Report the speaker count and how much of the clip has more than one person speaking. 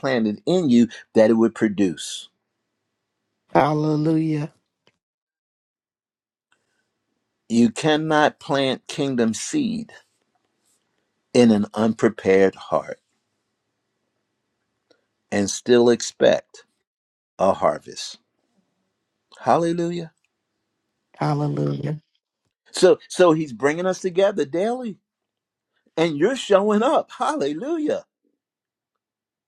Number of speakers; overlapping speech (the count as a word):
two, no overlap